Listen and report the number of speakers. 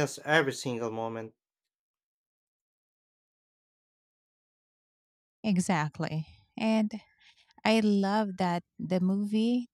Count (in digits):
2